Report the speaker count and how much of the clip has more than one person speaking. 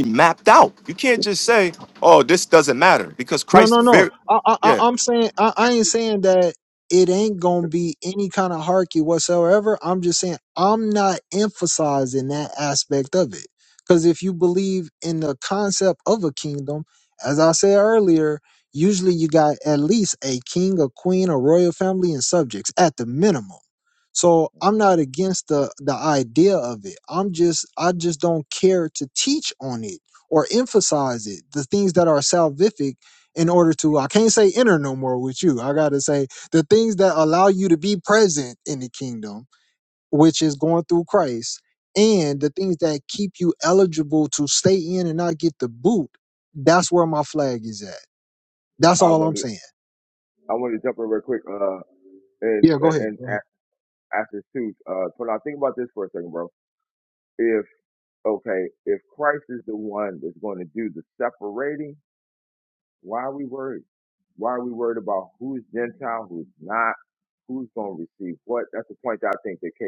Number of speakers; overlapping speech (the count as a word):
three, about 3%